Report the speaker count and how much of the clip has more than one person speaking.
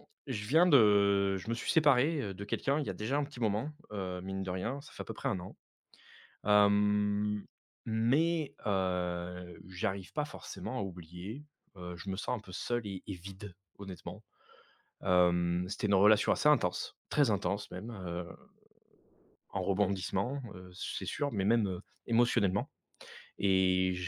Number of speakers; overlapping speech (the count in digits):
1, no overlap